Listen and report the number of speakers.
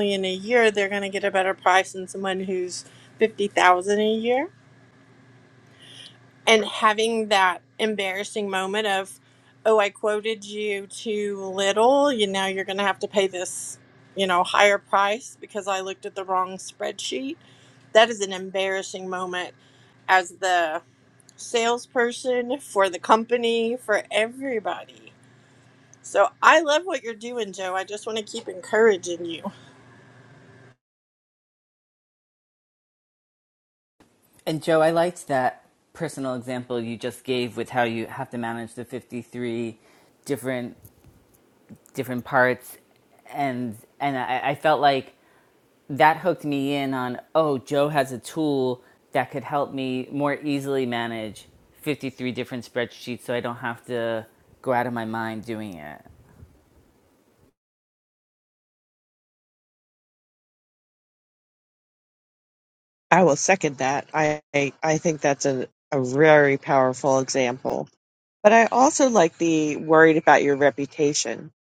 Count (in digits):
3